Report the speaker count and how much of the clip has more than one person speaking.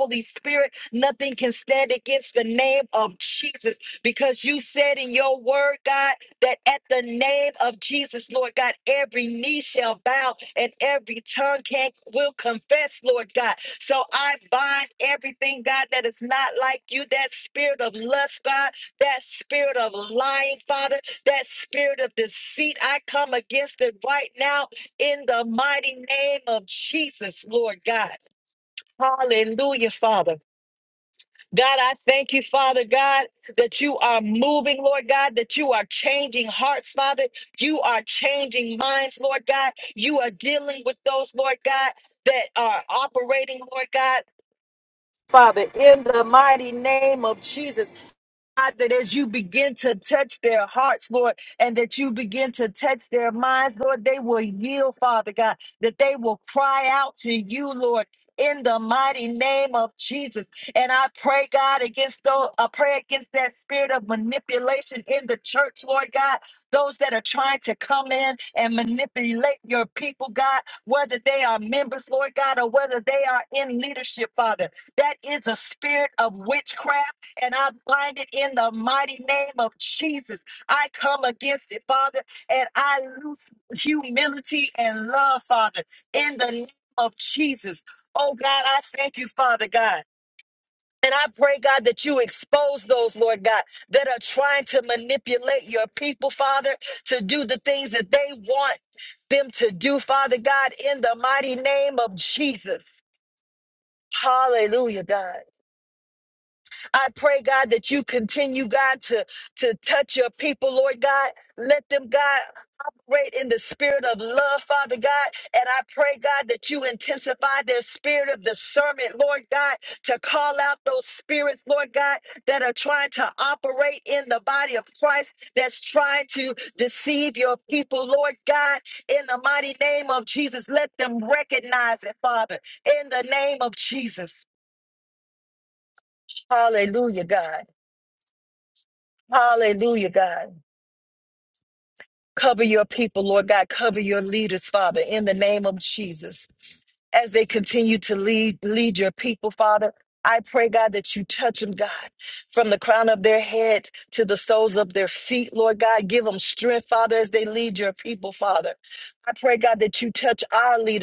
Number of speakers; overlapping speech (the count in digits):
1, no overlap